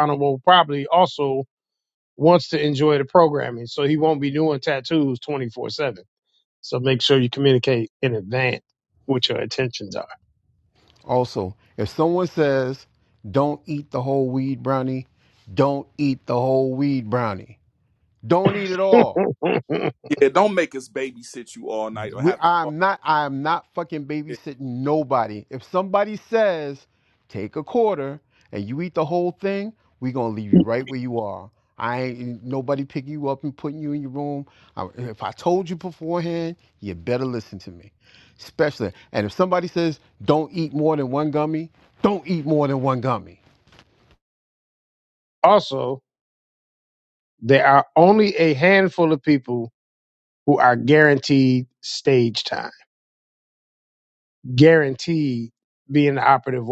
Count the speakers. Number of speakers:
3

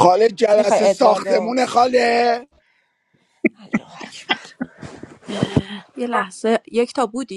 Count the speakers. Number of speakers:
2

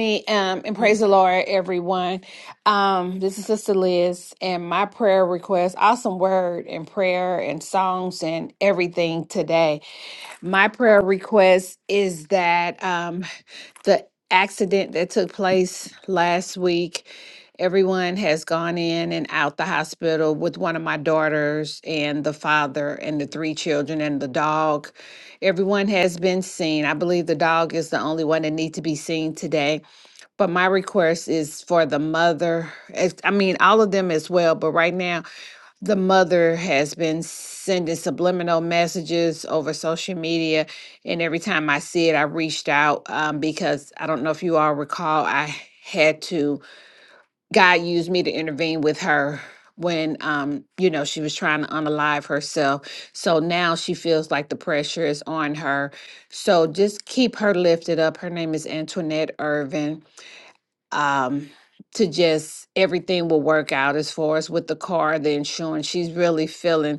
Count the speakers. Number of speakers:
1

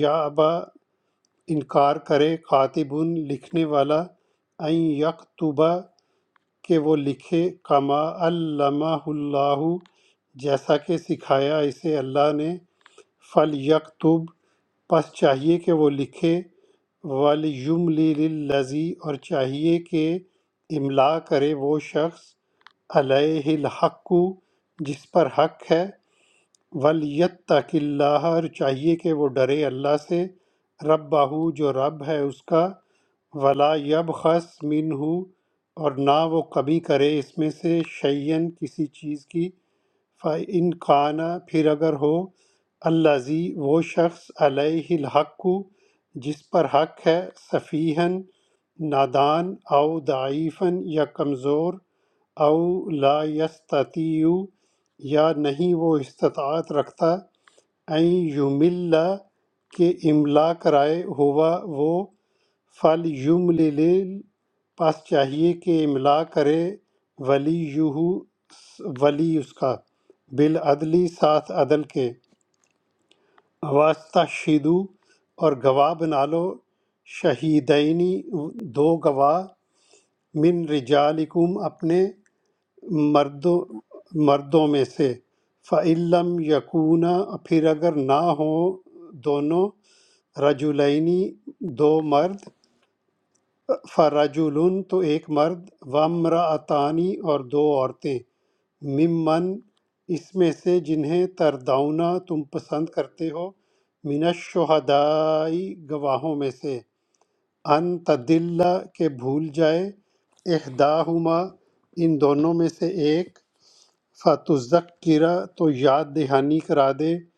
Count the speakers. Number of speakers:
1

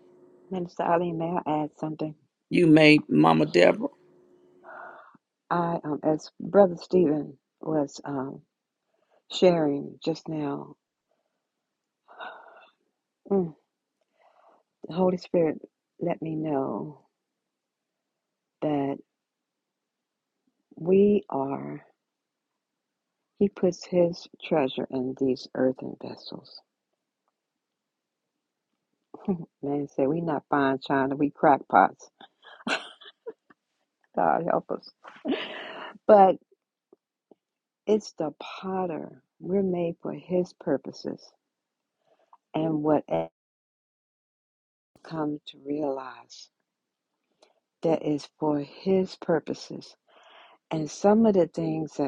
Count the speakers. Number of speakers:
2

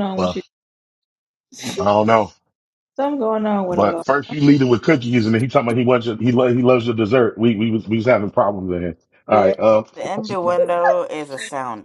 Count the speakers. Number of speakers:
3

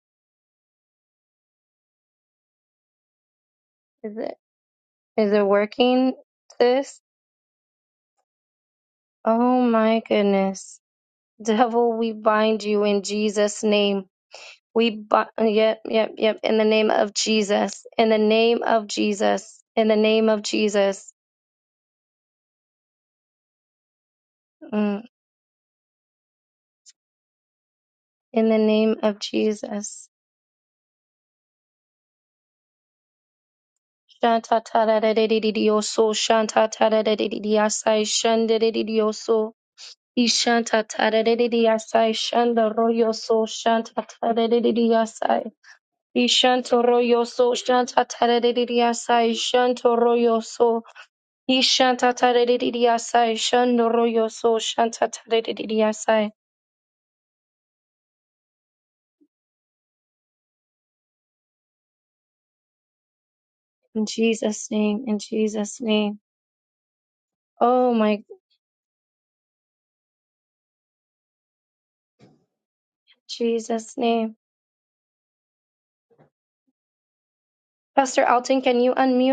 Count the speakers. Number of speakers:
1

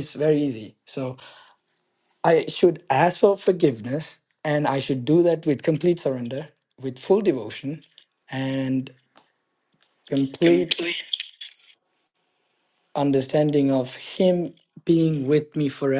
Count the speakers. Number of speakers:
1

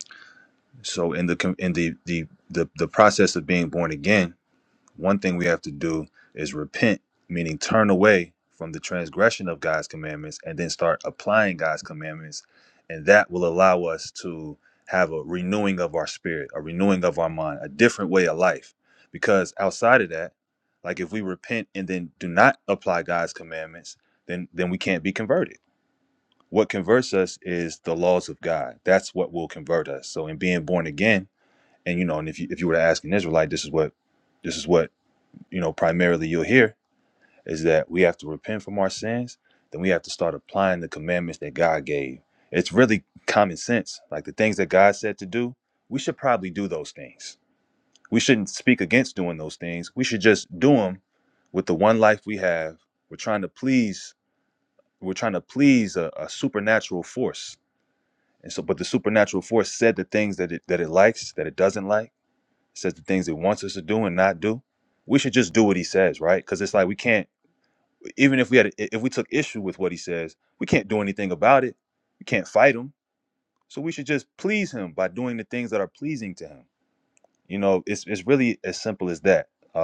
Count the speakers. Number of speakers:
1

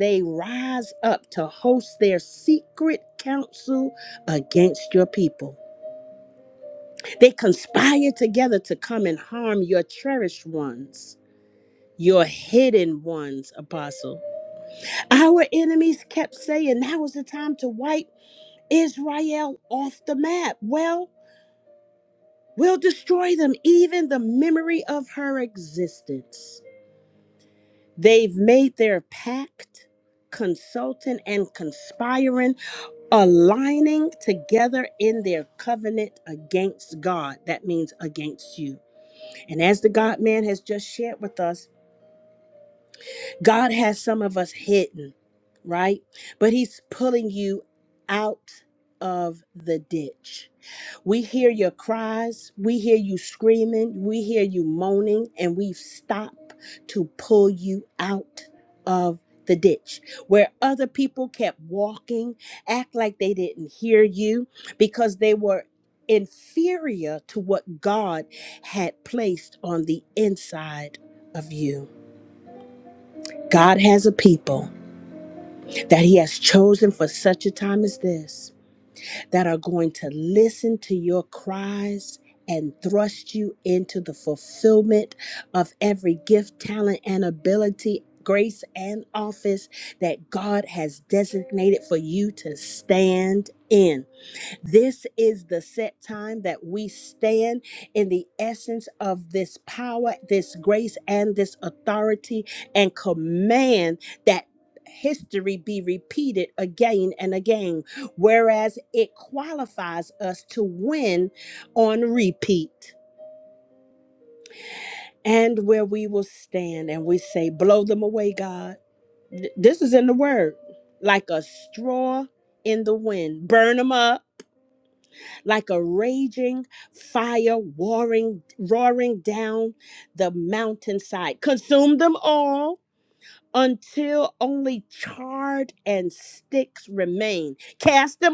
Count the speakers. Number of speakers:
1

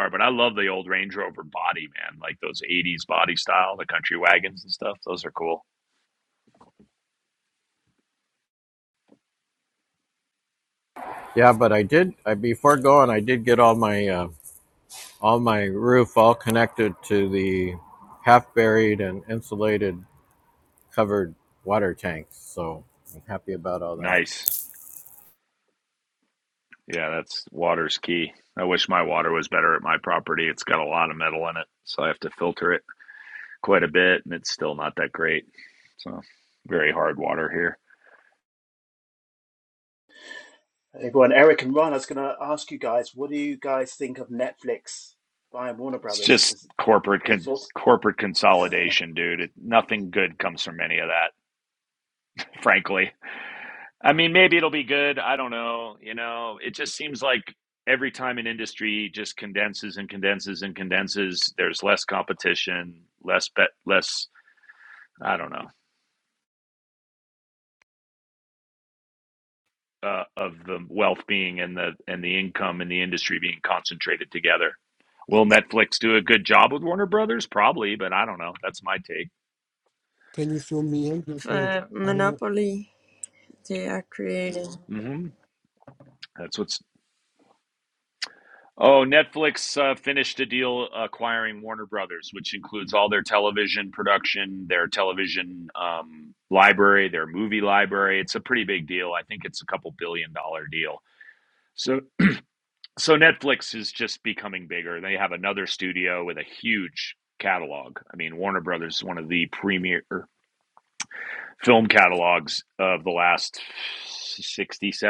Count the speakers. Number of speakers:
5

